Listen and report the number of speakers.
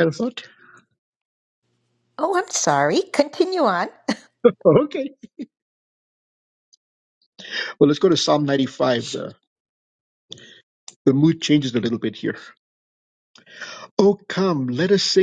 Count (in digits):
2